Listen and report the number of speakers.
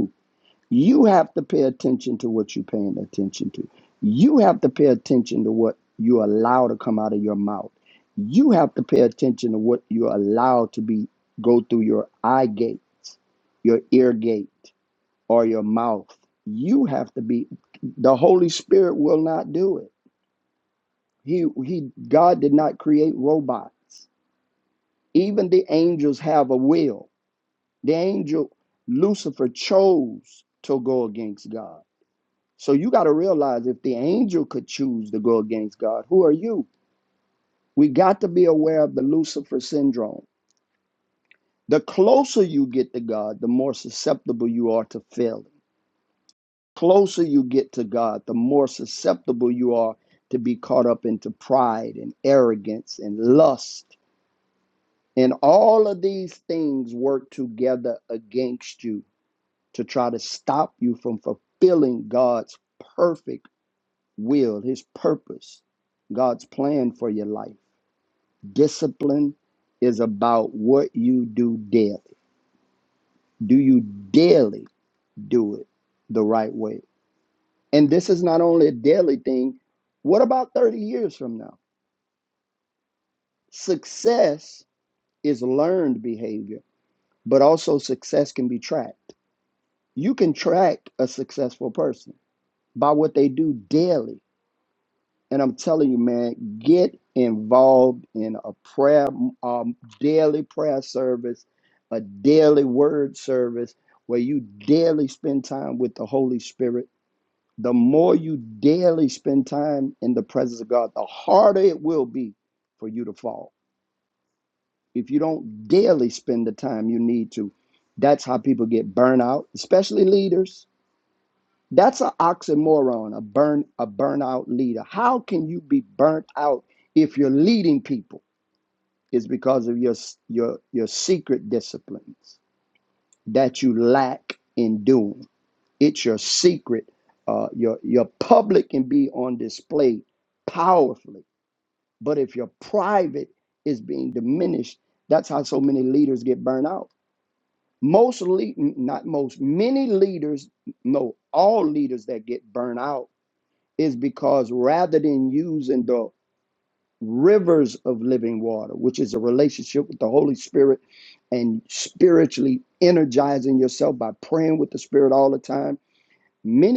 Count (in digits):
1